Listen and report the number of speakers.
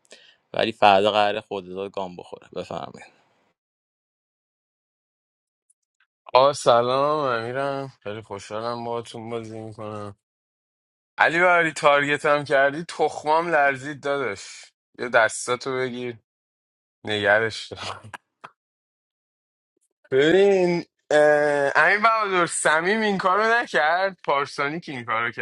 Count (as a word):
two